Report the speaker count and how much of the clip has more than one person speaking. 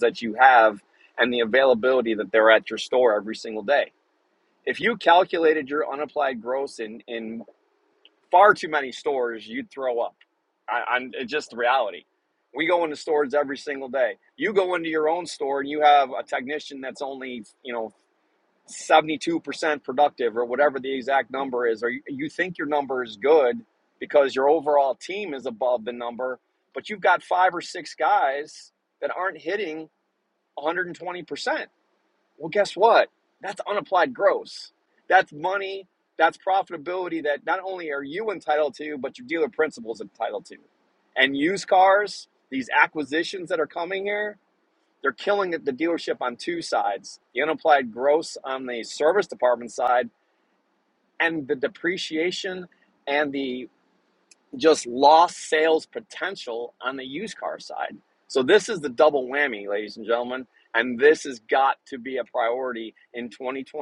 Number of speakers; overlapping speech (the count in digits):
1, no overlap